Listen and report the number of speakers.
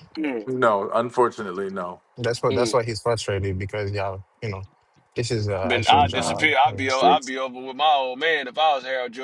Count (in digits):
3